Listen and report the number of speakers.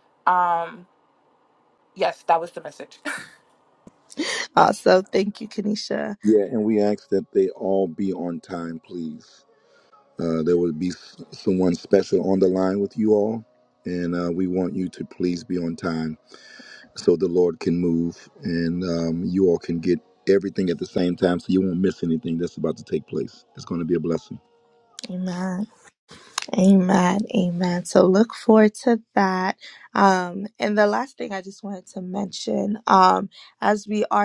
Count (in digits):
3